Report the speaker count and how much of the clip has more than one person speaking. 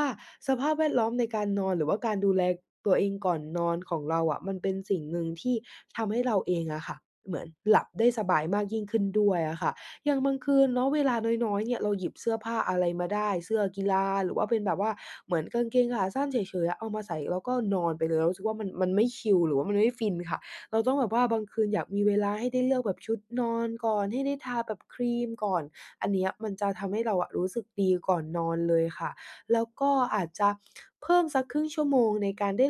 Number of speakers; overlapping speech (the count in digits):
1, no overlap